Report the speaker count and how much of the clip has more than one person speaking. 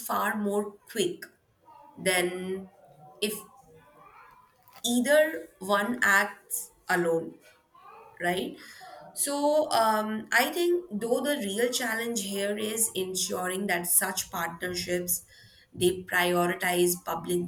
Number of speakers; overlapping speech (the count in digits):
1, no overlap